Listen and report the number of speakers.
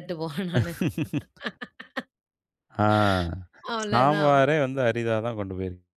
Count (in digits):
2